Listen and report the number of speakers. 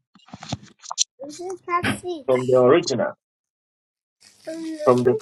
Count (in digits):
2